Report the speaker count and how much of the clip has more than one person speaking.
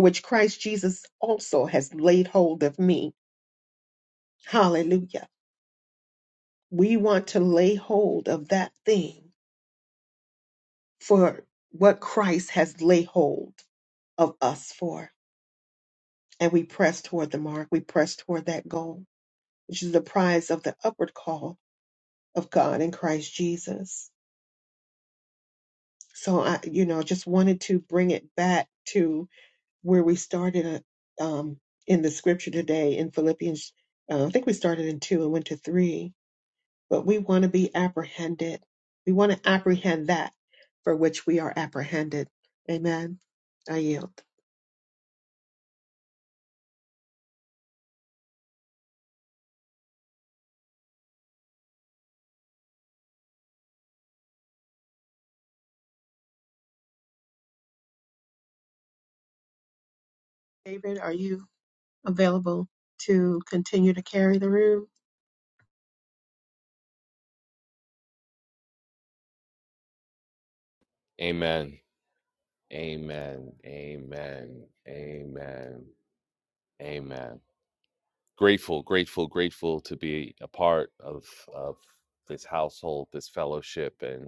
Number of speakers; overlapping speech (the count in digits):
2, no overlap